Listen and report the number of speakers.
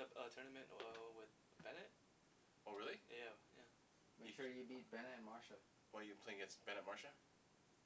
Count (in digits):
3